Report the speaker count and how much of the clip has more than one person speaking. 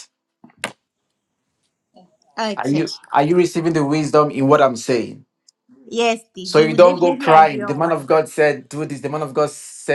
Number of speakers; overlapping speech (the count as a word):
two, about 19%